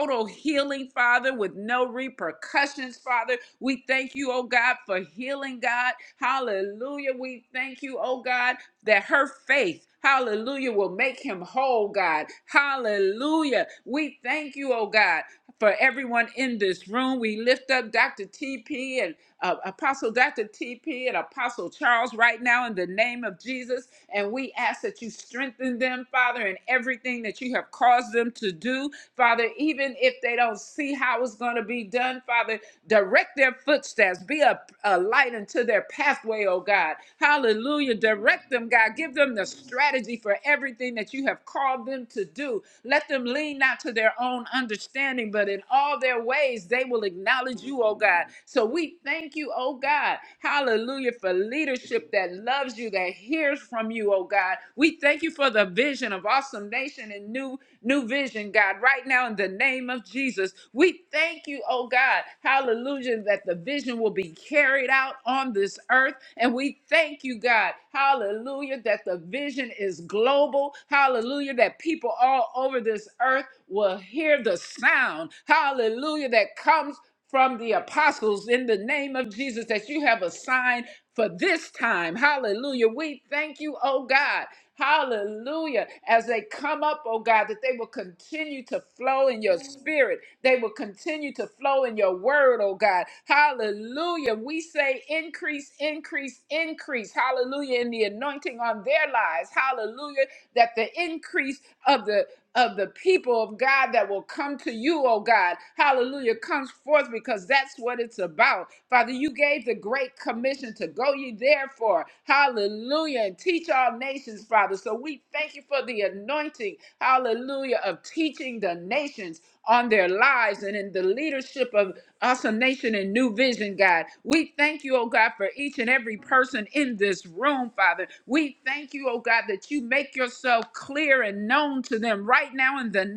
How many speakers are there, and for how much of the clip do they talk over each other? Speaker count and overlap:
one, no overlap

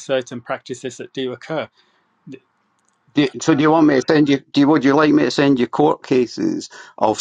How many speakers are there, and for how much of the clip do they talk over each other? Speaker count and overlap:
two, no overlap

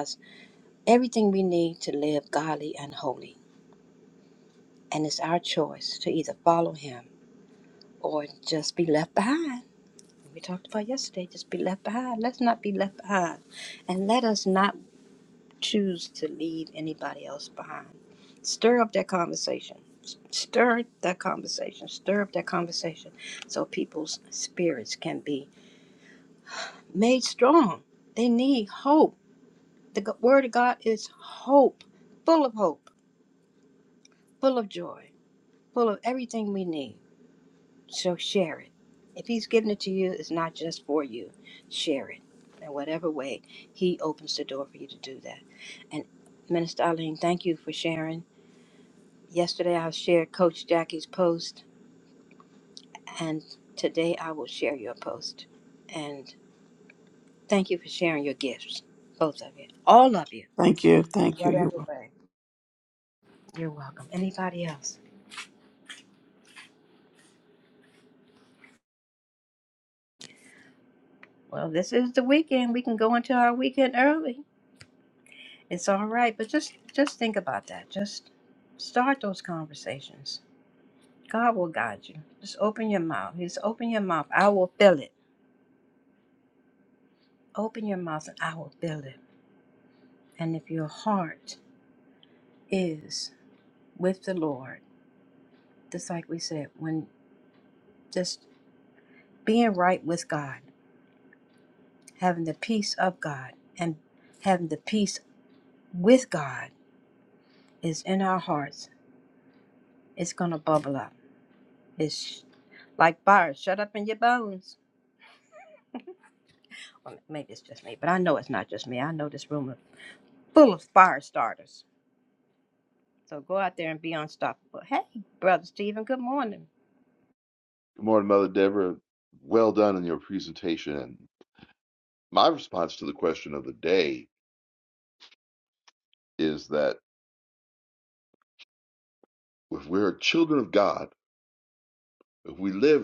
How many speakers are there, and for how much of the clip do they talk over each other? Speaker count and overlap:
three, under 1%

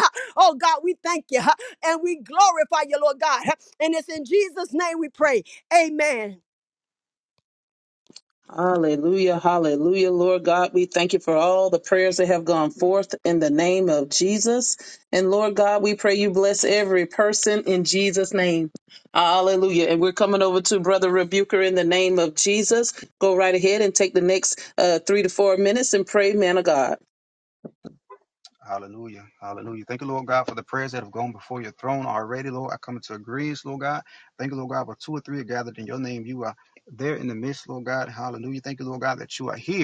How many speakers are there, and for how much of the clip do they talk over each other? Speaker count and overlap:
three, no overlap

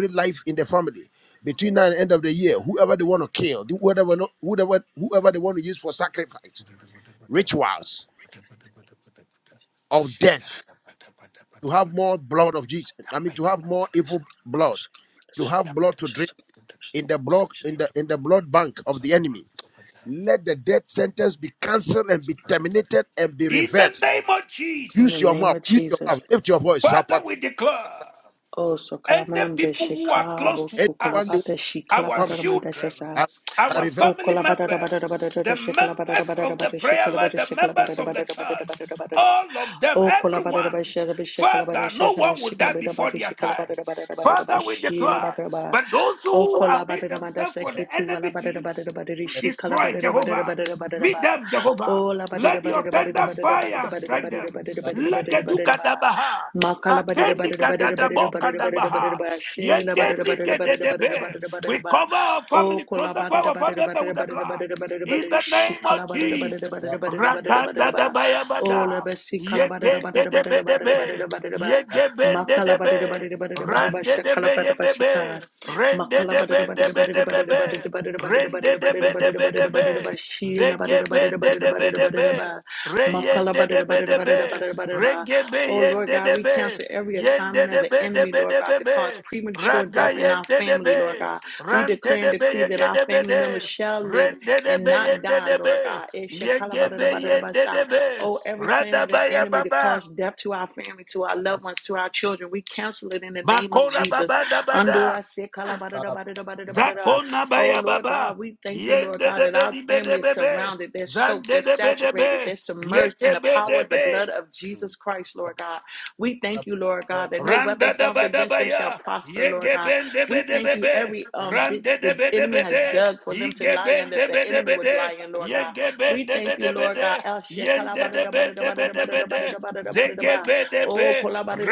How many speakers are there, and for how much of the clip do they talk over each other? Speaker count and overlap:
three, about 62%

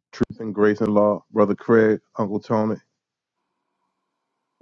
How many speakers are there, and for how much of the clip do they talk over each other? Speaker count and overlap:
one, no overlap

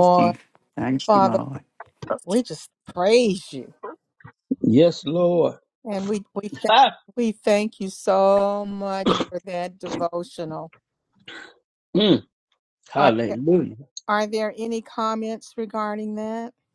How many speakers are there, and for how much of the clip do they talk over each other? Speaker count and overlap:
three, about 7%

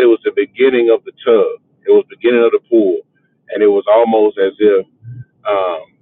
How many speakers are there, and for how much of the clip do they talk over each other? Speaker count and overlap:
one, no overlap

